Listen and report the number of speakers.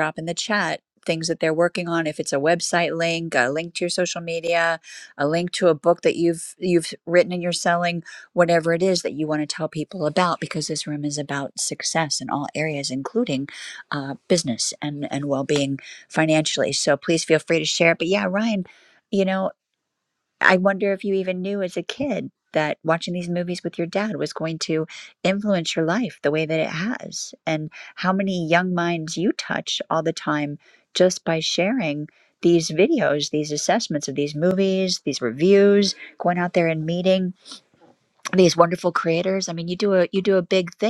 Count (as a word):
one